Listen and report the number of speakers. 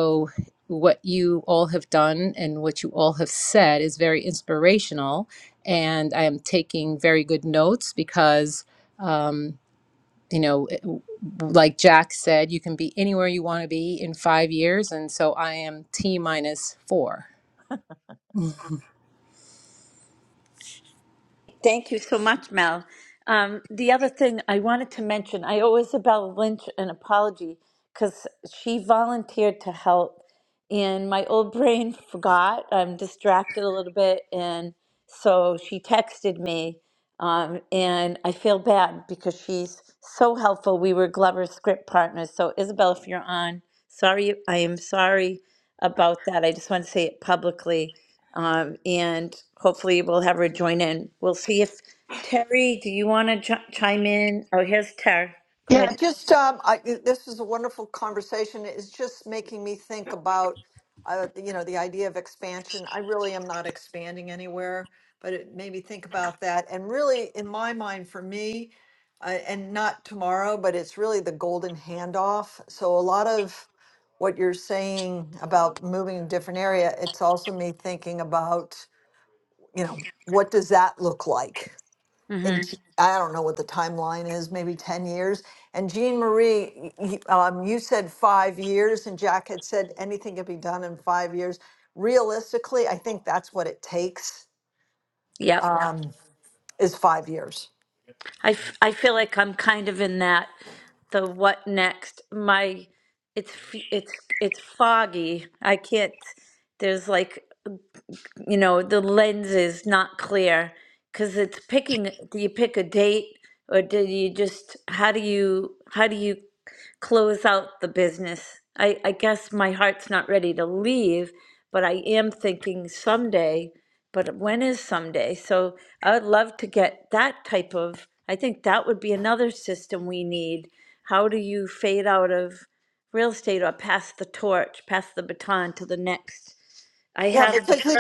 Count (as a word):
three